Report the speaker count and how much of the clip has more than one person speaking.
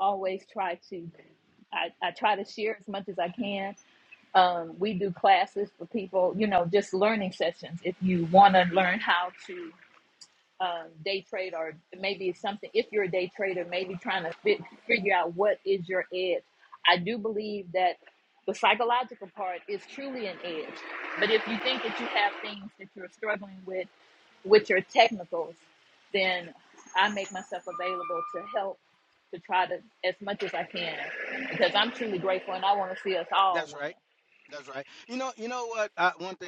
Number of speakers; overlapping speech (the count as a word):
two, about 1%